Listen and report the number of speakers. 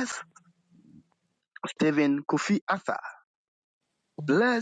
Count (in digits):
1